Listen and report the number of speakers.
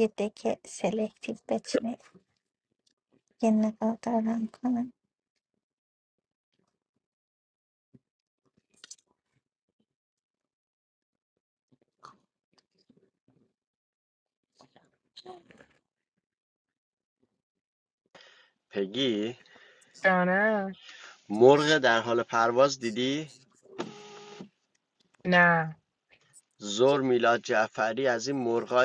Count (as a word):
three